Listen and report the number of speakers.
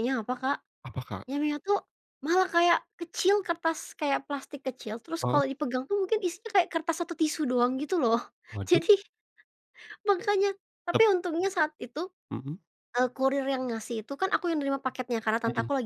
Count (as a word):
two